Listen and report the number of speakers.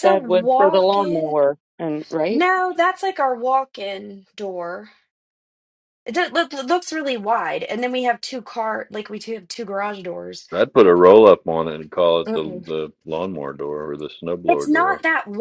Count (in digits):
3